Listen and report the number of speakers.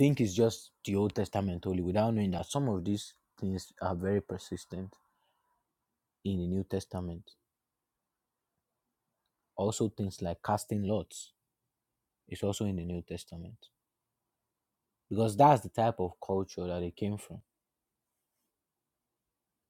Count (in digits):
1